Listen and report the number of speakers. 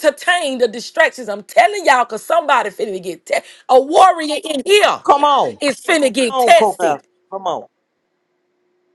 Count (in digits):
2